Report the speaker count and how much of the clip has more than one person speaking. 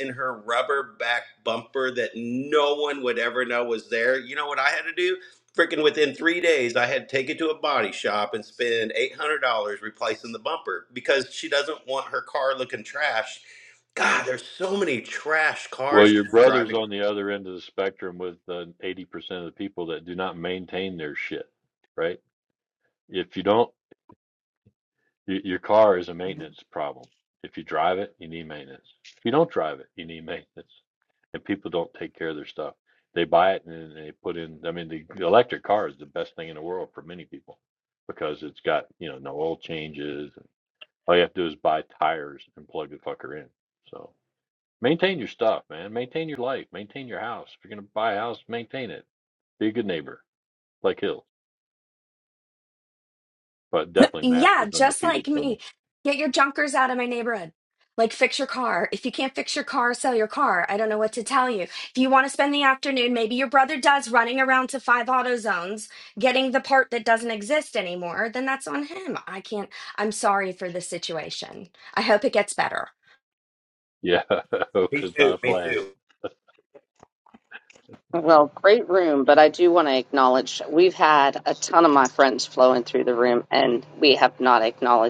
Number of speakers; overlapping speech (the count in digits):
4, about 4%